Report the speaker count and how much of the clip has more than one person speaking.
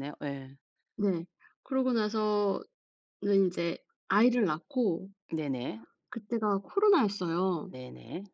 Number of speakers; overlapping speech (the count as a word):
two, no overlap